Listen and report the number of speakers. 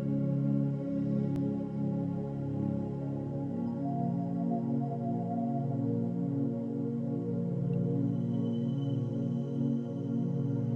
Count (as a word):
zero